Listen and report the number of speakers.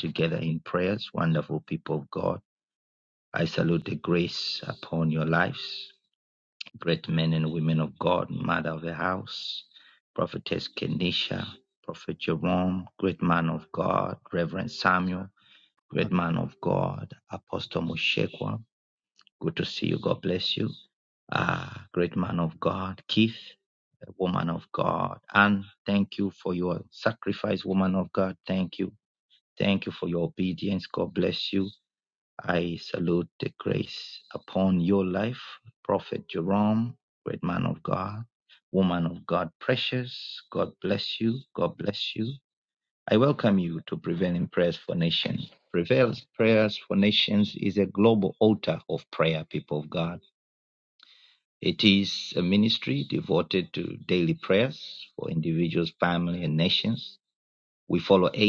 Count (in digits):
1